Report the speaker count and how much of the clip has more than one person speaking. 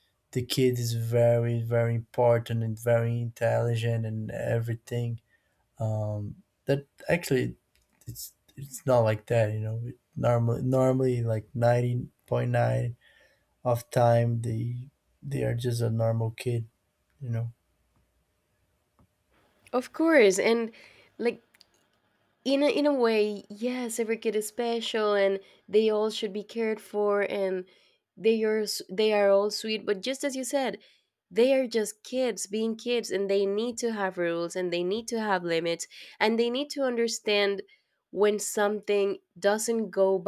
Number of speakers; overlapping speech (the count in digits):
2, no overlap